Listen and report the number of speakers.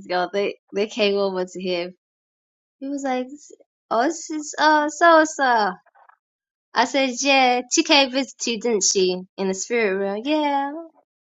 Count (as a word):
one